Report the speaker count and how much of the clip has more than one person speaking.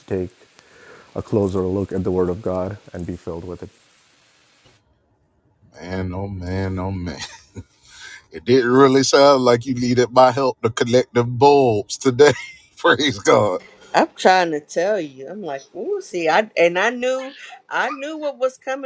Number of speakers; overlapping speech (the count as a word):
three, no overlap